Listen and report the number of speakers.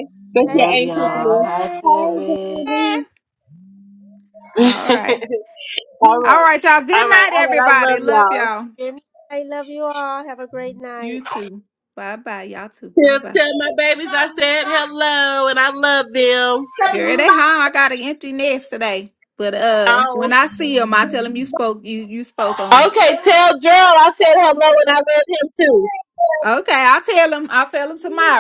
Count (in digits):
4